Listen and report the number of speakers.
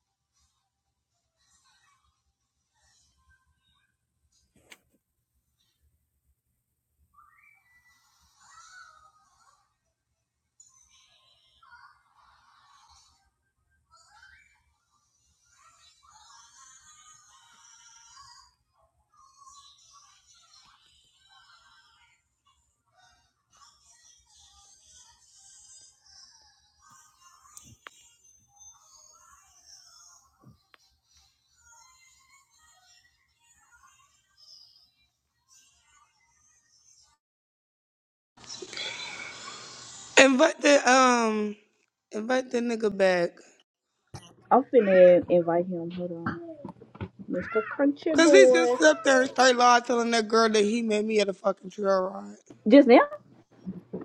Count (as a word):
two